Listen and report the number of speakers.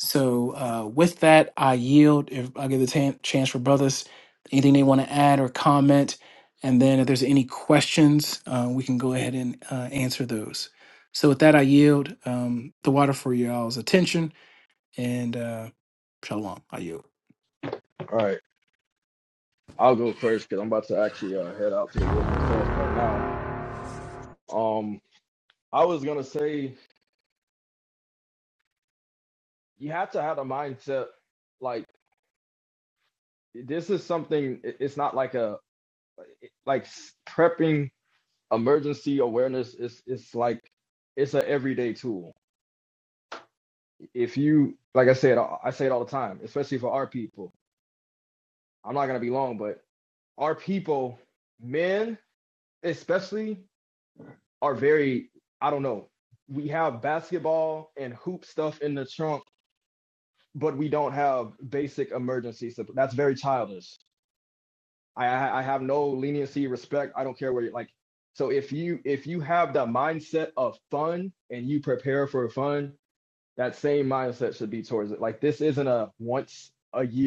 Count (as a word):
two